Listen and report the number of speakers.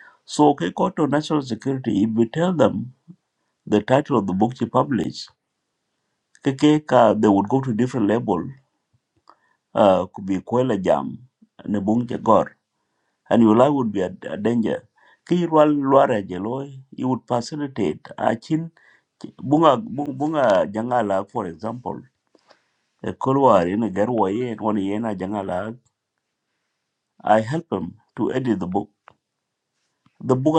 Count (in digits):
1